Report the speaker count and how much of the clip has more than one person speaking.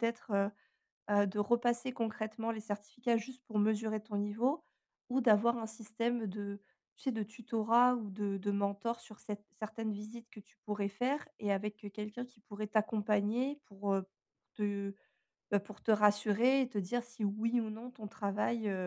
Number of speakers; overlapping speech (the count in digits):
1, no overlap